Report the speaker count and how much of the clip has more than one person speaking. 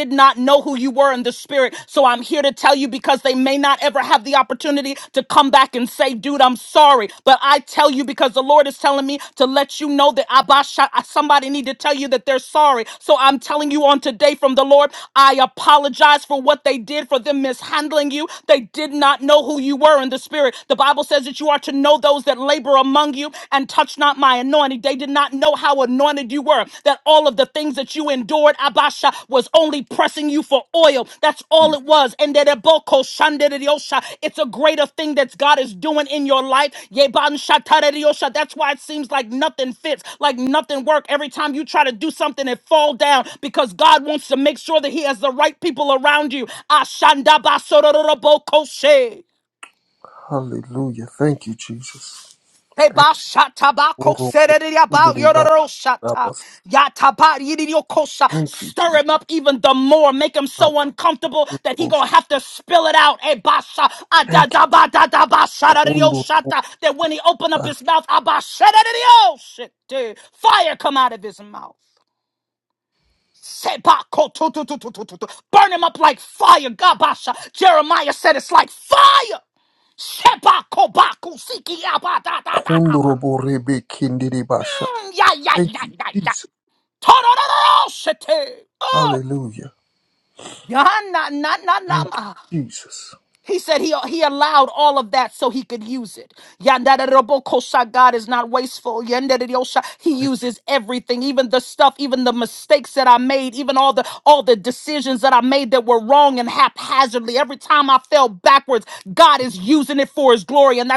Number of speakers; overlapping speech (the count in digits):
2, about 5%